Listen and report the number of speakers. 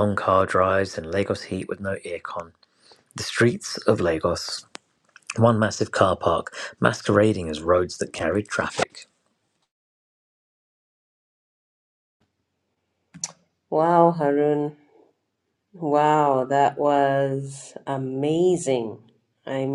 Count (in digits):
2